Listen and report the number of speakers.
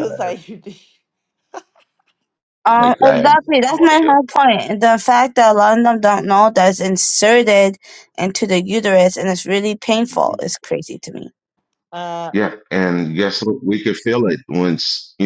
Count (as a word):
three